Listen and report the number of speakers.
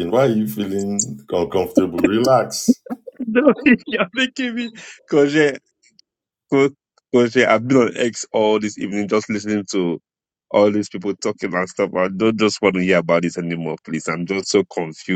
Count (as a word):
two